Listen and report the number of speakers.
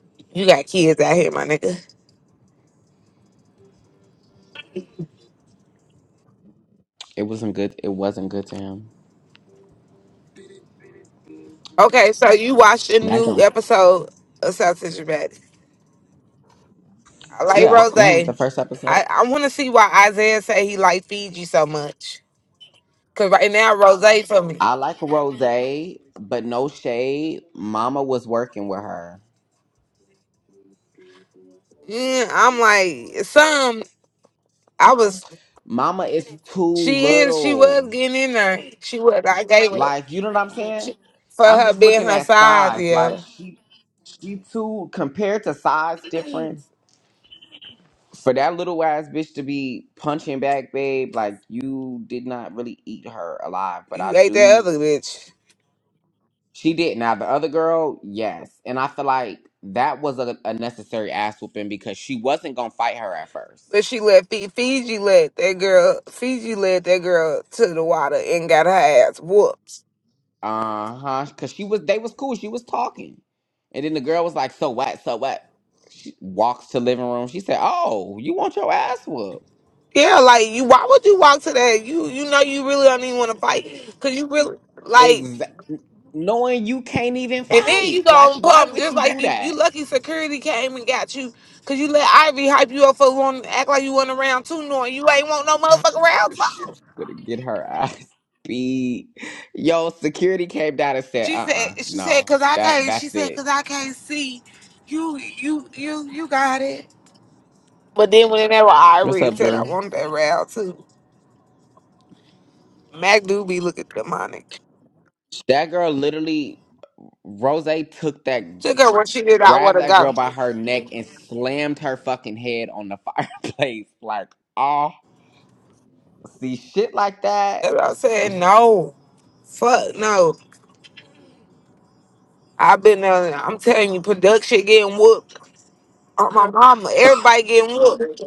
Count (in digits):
2